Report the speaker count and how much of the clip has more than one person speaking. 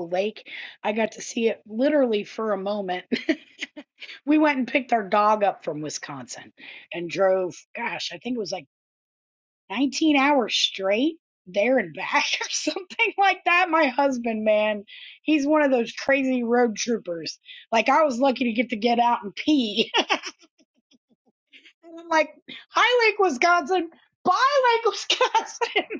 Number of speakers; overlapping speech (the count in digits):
1, no overlap